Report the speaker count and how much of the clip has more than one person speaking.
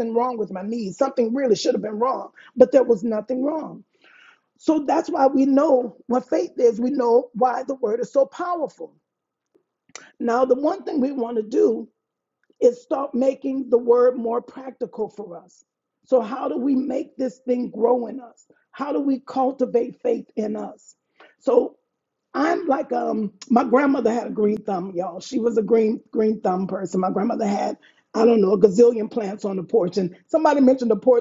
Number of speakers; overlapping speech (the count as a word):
one, no overlap